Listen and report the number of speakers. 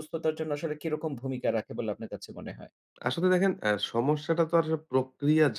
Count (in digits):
2